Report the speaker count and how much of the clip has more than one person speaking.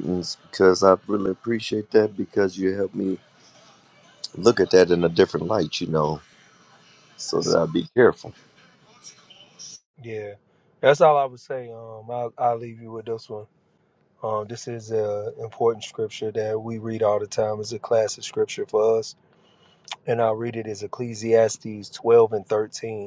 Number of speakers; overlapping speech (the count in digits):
2, no overlap